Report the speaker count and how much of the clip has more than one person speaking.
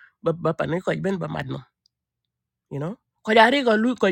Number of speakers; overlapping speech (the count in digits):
1, no overlap